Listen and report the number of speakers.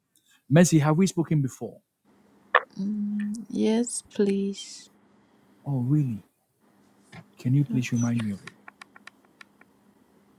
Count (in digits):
2